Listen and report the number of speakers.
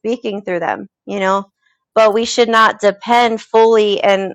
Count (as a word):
one